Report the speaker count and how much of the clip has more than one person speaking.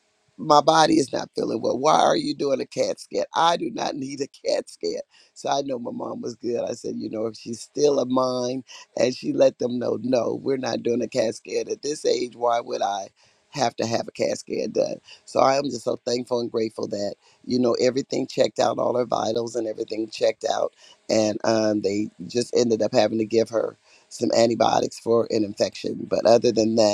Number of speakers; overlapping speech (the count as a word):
one, no overlap